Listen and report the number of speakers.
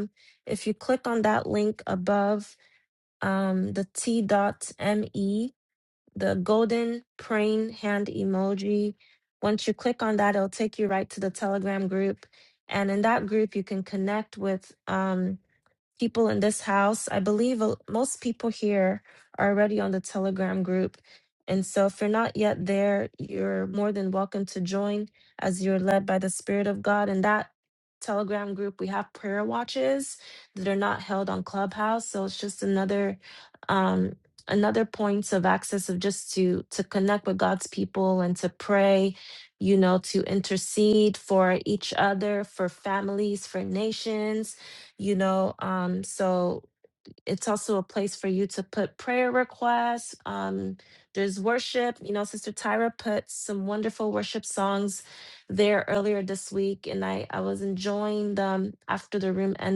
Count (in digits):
1